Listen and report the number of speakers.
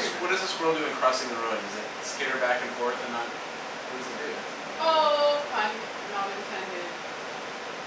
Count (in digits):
2